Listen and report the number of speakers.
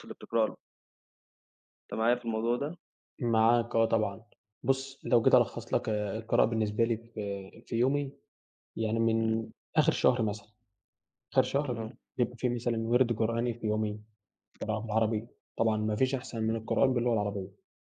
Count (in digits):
2